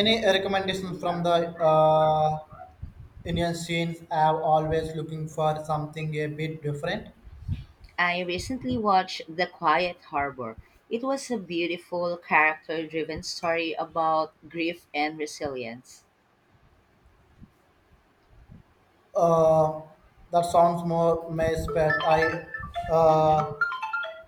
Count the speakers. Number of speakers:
2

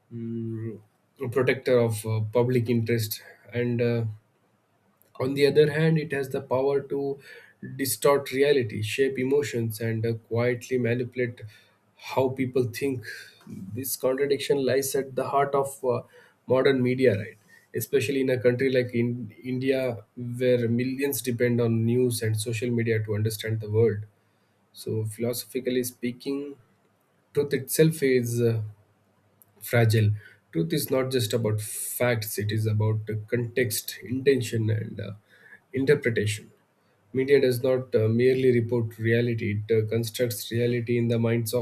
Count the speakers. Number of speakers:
1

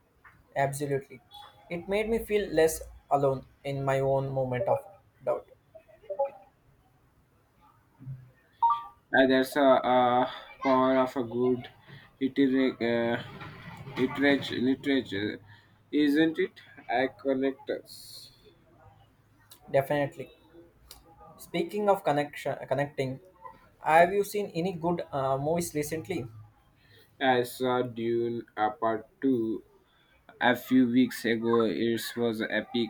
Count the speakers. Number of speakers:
2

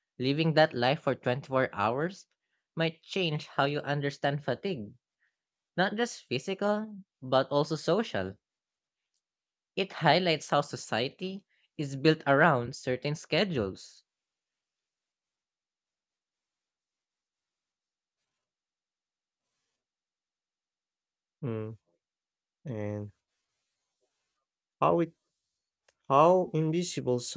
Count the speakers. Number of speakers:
2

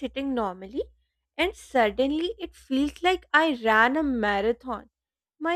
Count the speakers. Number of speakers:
1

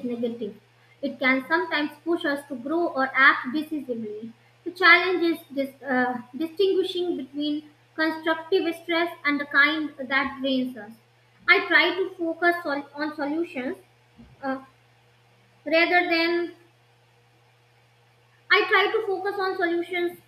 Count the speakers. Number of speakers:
1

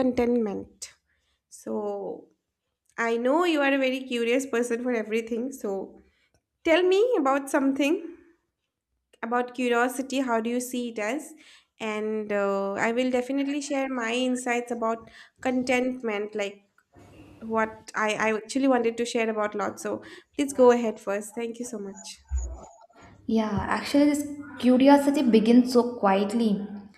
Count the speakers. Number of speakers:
2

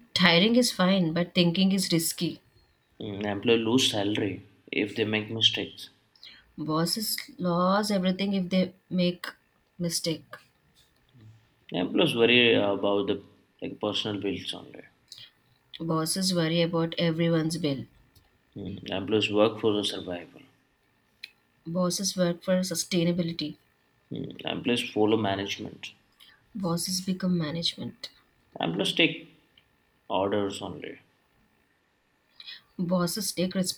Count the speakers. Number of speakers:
2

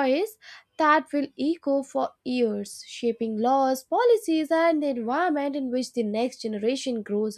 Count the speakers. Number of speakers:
1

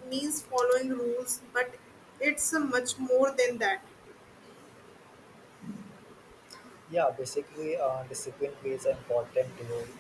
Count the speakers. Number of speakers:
2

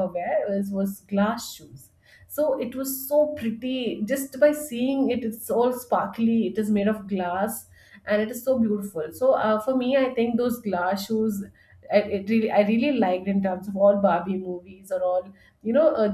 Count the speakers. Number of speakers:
1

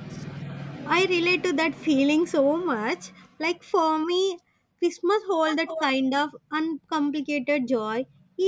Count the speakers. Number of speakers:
1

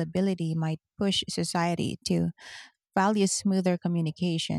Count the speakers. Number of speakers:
1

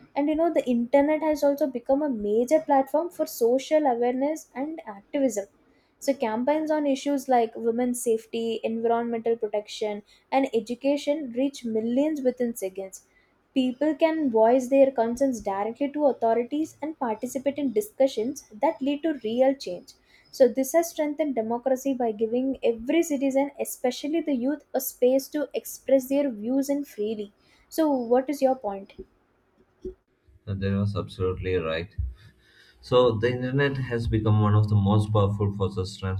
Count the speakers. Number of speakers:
2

